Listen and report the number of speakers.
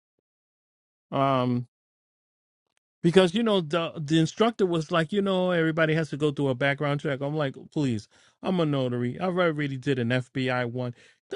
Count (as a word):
one